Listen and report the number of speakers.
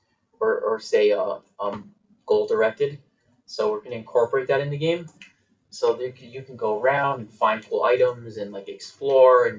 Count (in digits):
1